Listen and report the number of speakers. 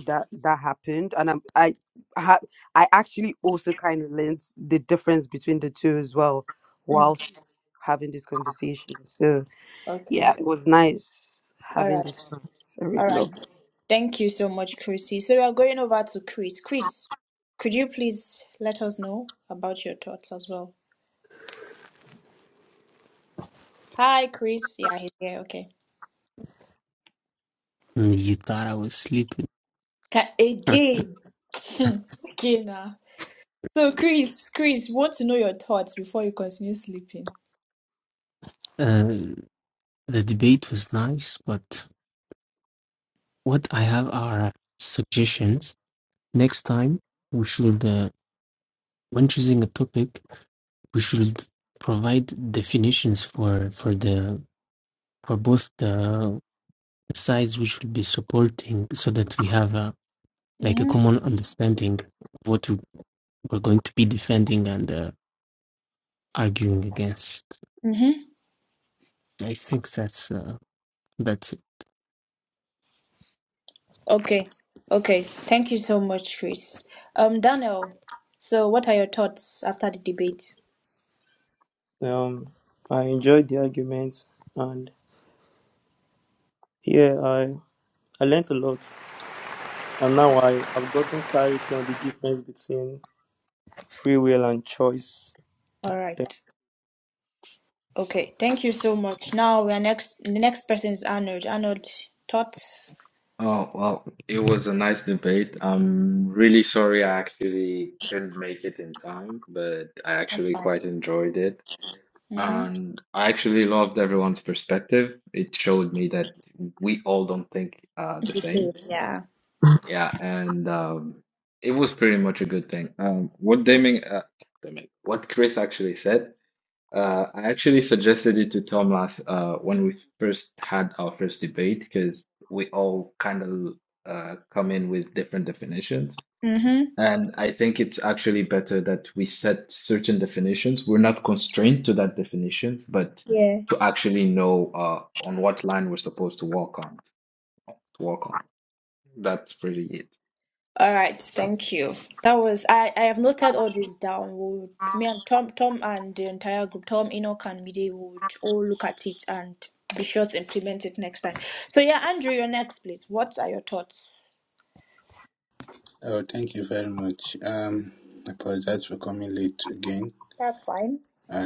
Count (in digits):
6